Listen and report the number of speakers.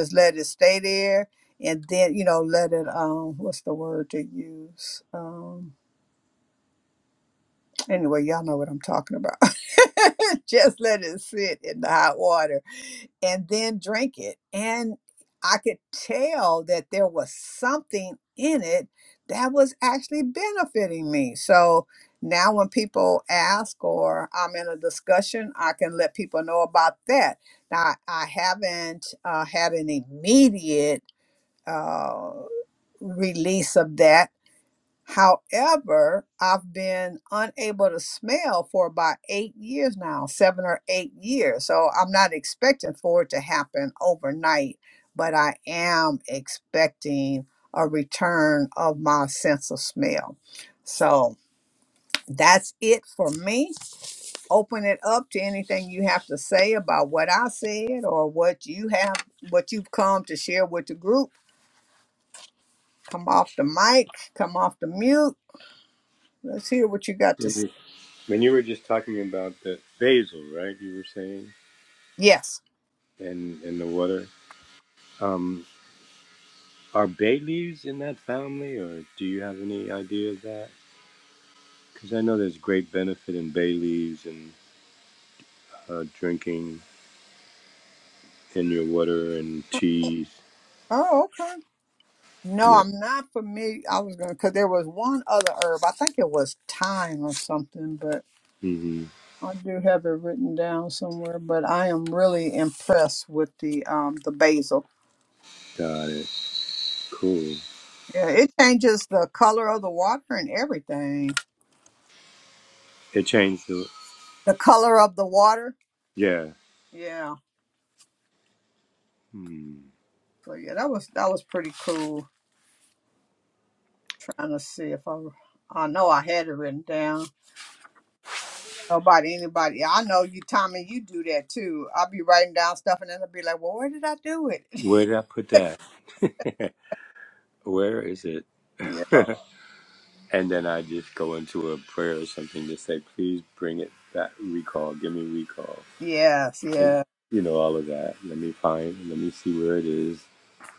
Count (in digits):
2